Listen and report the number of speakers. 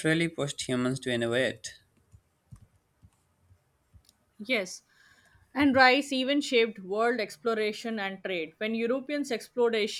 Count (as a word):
two